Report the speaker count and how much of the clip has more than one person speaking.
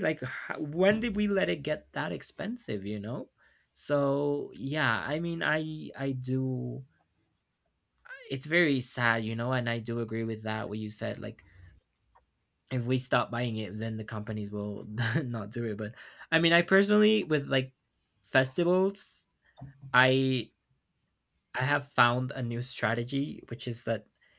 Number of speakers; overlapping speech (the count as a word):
one, no overlap